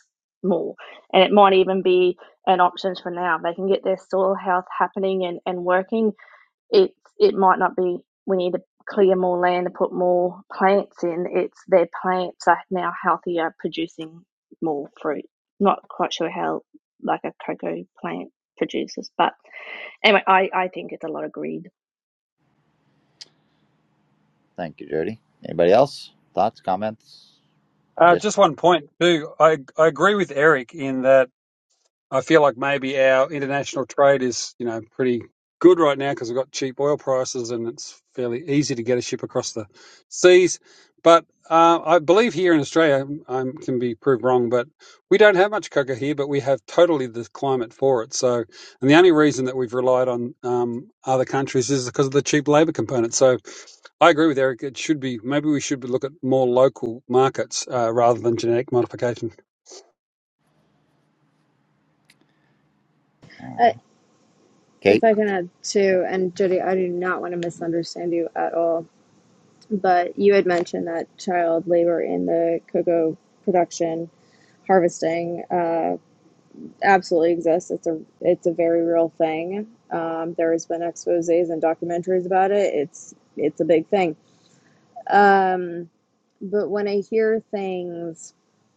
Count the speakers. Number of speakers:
four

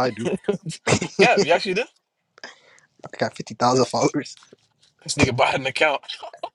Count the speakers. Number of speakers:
two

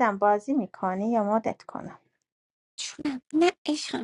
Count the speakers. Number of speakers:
two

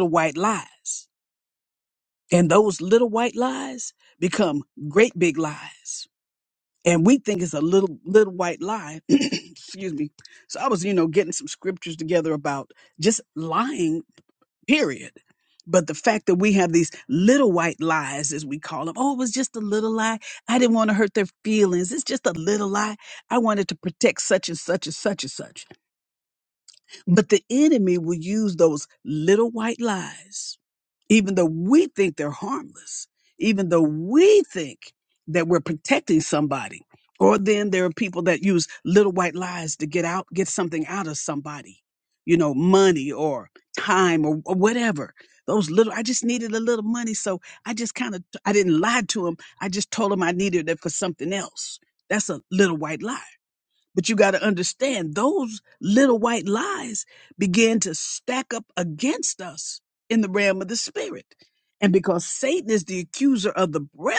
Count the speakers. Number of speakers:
one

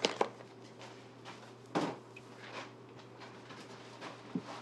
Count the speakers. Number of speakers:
zero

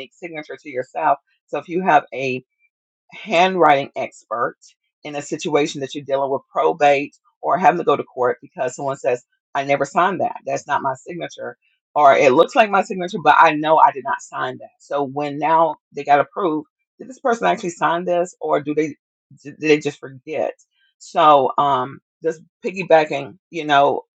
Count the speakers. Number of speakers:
one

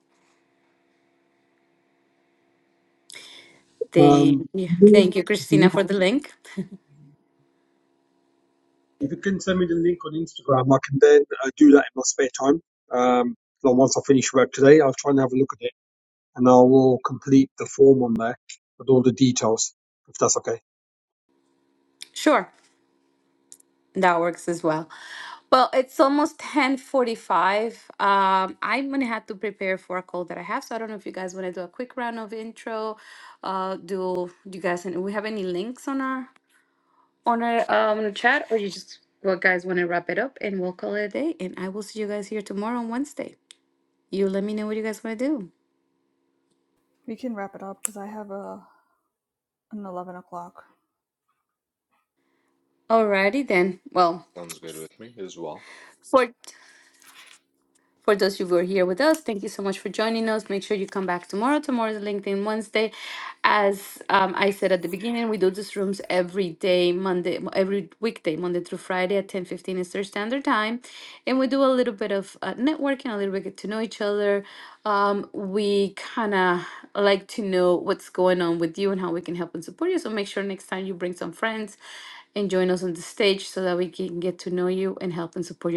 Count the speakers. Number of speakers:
four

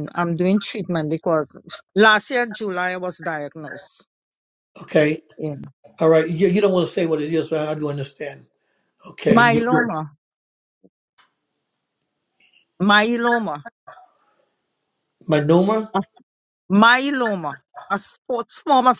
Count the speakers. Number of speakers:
two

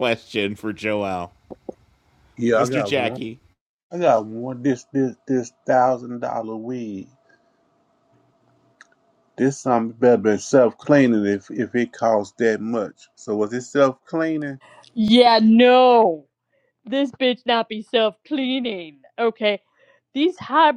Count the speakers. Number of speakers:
three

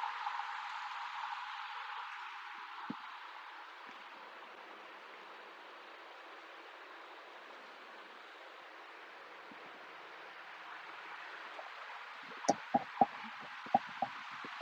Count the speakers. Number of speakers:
zero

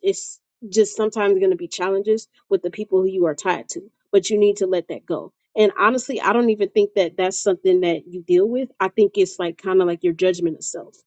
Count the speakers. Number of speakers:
one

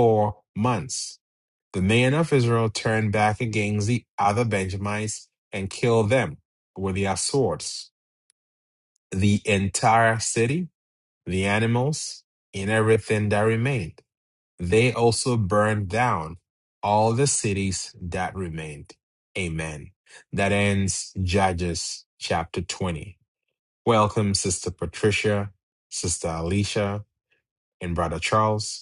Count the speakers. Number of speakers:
one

